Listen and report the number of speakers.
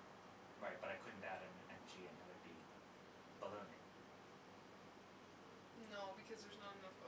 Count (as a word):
two